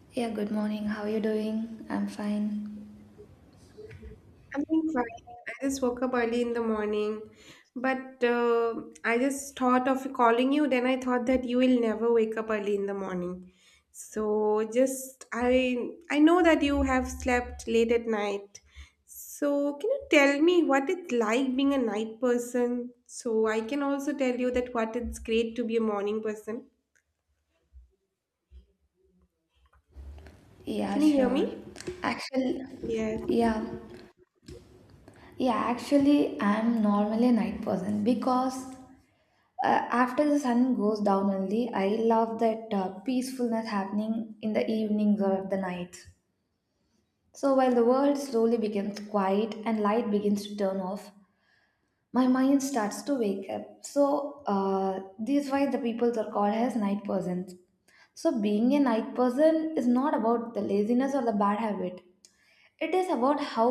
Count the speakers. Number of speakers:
2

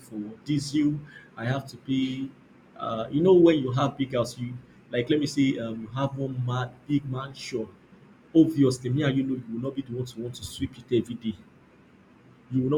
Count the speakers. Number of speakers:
1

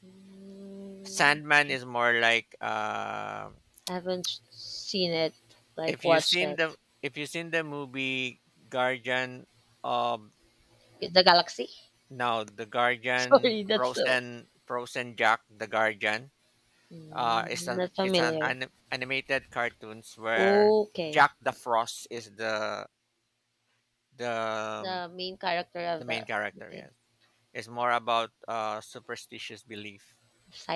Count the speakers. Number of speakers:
2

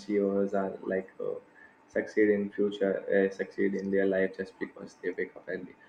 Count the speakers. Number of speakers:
1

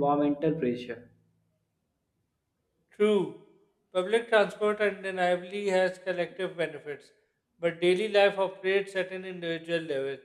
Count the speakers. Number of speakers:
2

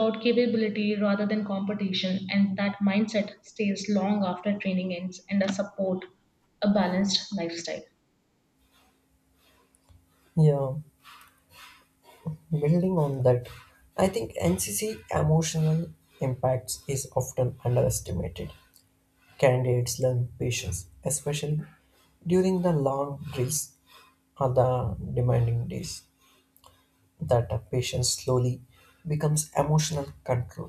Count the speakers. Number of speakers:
2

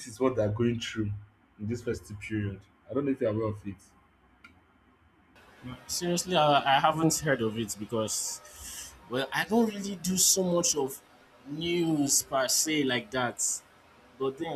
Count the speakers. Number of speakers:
2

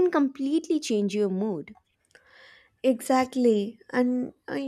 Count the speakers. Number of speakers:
2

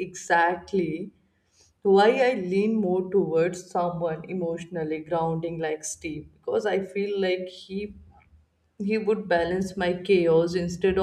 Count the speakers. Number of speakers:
1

